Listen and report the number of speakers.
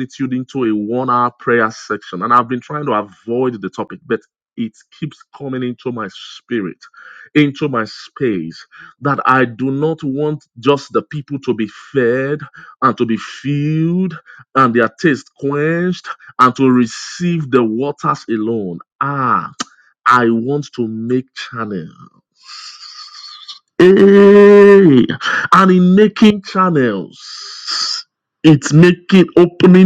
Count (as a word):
one